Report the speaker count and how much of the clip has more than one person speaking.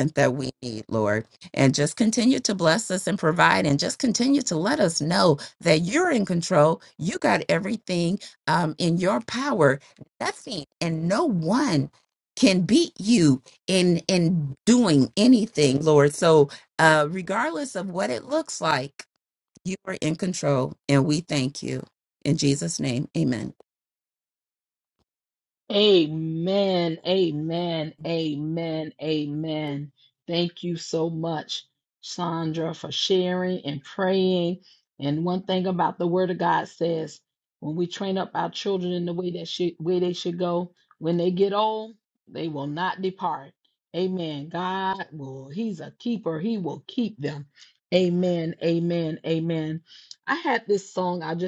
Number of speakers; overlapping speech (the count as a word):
two, no overlap